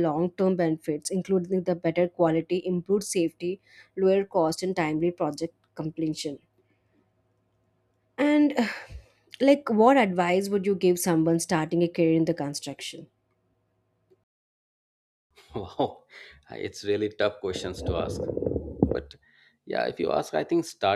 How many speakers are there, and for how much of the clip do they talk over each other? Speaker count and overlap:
two, no overlap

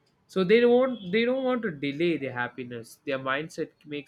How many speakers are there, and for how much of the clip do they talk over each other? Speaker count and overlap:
one, no overlap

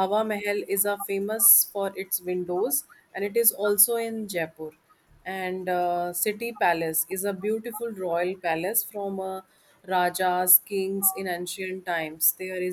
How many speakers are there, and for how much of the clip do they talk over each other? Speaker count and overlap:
one, no overlap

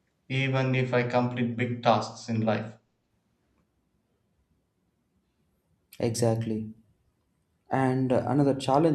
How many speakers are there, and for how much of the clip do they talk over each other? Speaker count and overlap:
two, no overlap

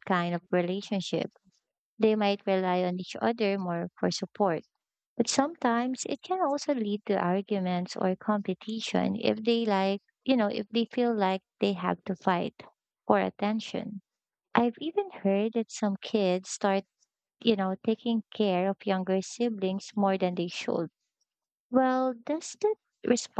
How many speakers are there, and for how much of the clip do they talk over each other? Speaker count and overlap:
one, no overlap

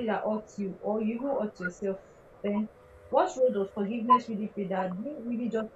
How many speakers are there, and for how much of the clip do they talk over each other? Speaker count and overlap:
one, no overlap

